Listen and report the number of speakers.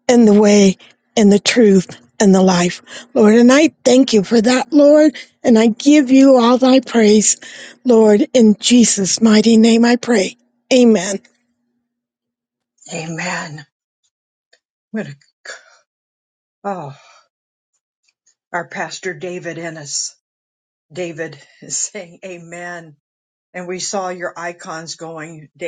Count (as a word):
two